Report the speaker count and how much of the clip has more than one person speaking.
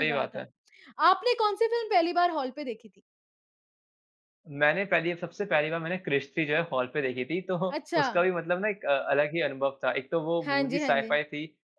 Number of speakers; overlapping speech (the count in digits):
2, about 12%